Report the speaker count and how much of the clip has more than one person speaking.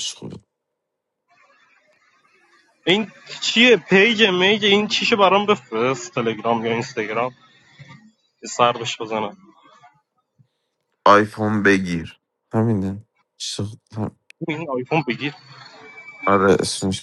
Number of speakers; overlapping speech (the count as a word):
two, no overlap